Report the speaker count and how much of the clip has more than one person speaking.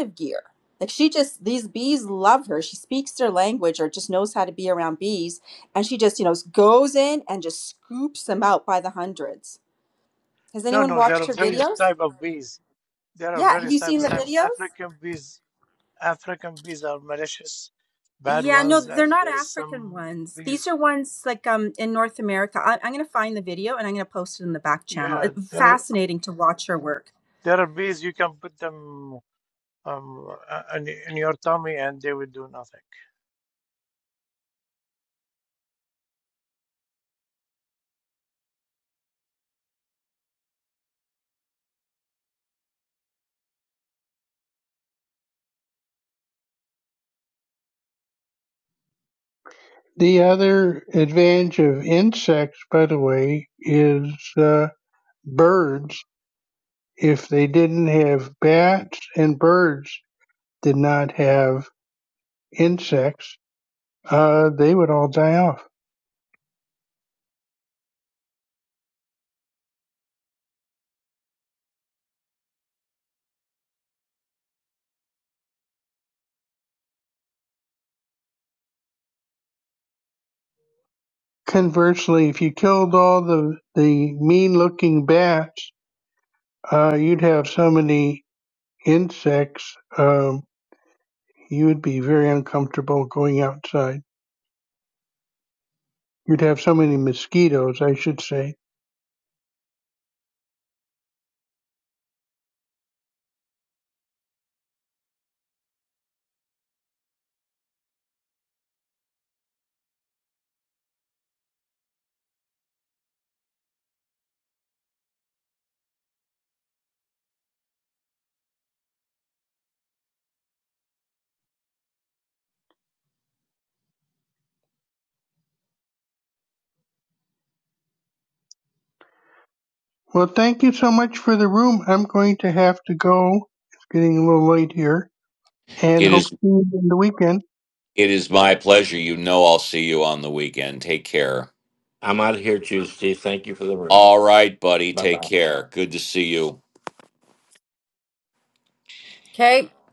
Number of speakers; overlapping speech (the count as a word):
five, about 4%